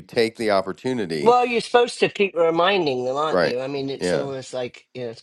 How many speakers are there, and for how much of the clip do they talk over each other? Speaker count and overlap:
2, about 13%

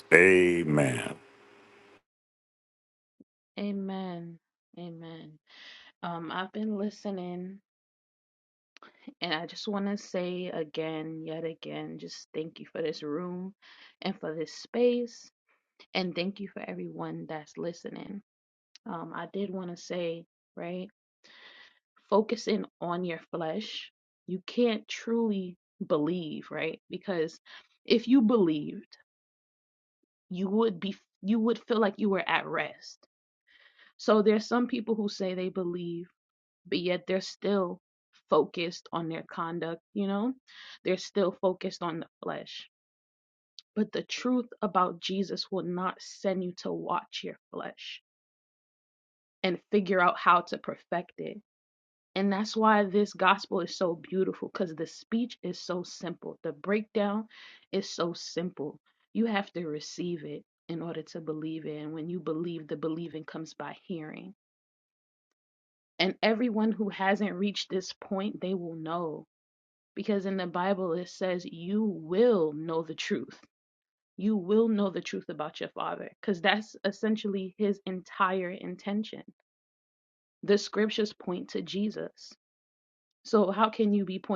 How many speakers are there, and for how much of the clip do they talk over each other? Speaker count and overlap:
2, no overlap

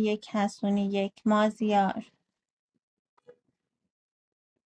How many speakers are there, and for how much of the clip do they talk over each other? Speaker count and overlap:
1, no overlap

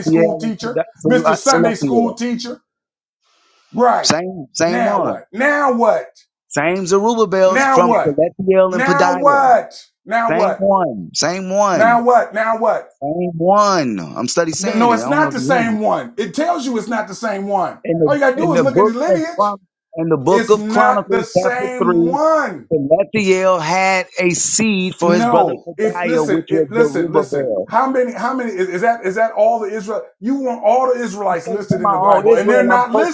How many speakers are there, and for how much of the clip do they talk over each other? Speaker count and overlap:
2, about 41%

